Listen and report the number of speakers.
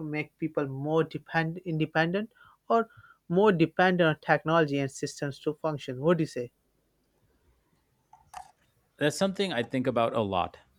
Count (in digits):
2